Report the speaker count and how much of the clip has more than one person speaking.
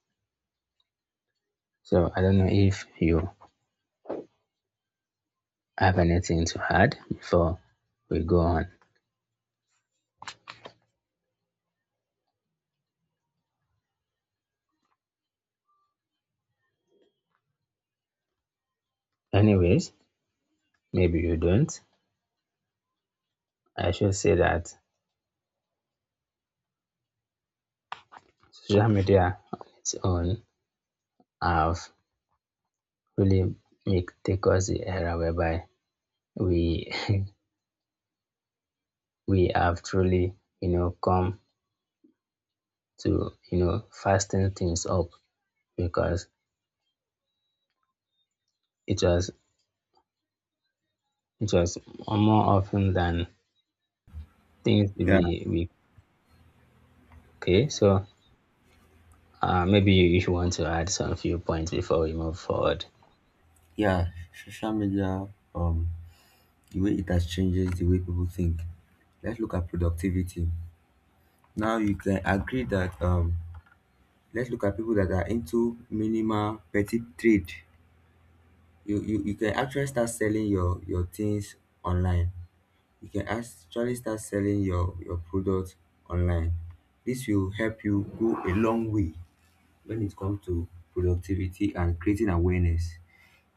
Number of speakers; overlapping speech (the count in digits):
2, under 1%